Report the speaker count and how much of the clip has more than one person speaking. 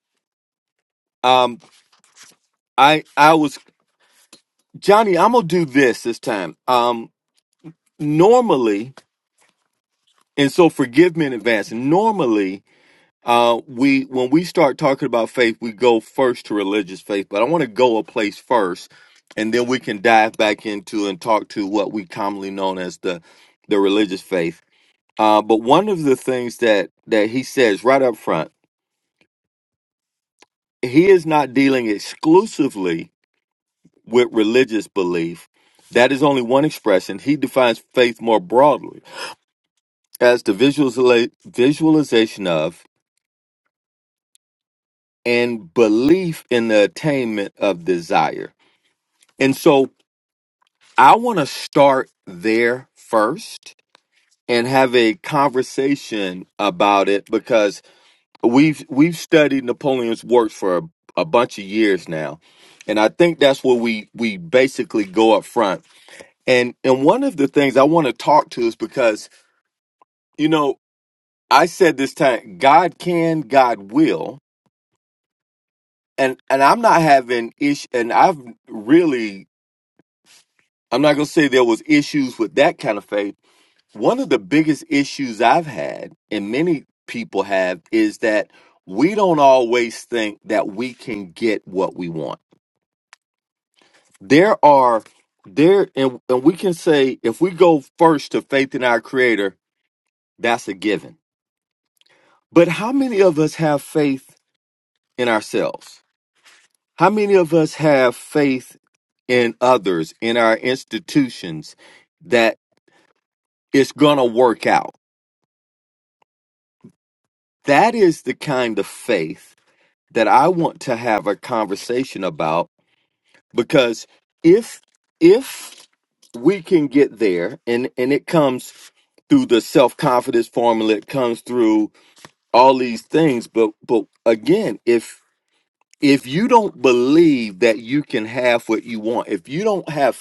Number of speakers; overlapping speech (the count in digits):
1, no overlap